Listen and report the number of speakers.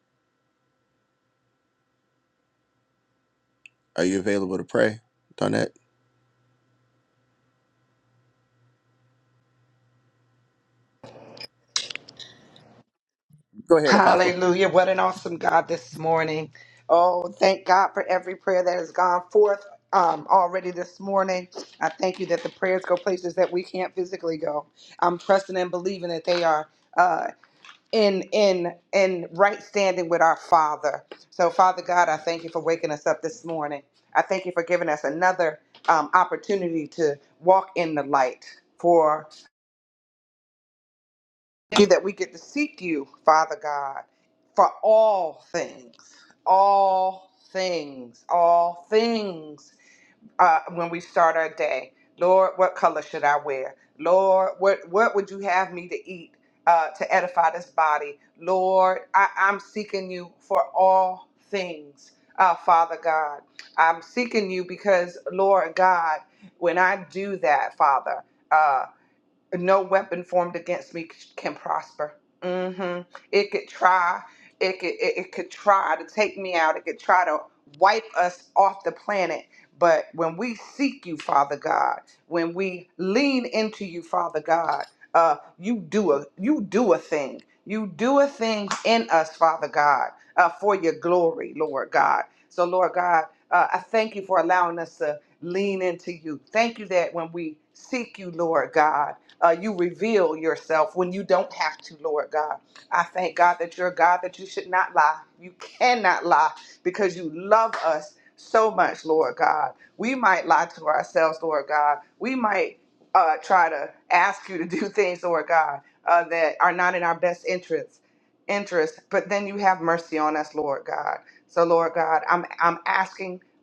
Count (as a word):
two